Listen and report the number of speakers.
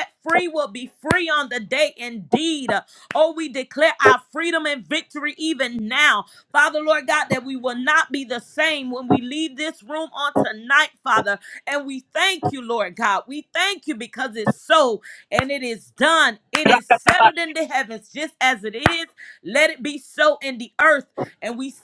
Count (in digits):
1